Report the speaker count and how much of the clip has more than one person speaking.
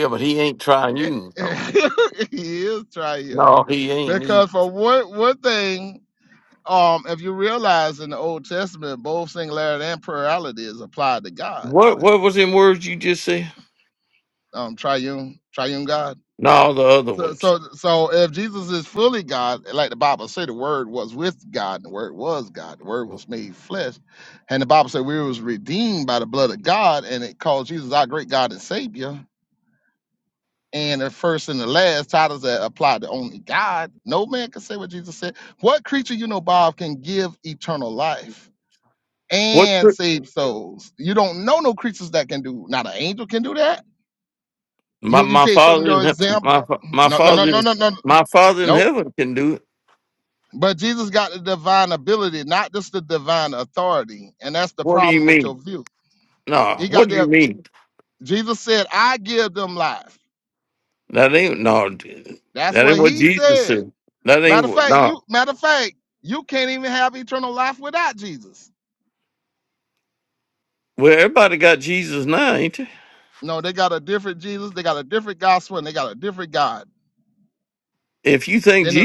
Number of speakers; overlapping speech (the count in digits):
2, about 9%